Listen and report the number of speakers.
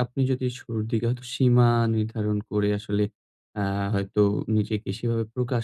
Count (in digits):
1